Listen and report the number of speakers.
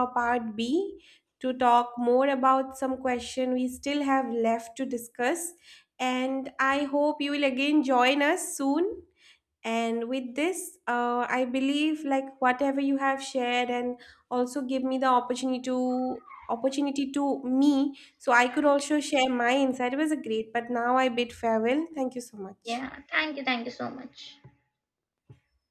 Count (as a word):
two